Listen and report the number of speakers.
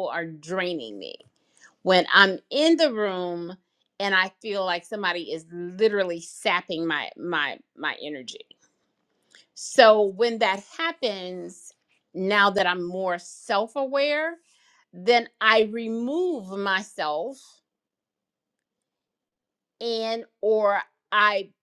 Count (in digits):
1